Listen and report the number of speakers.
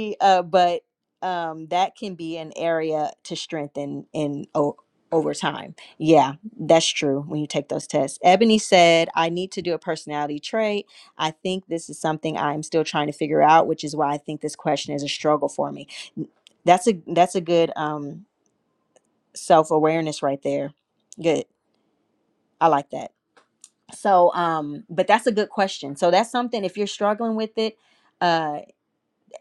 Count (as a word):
one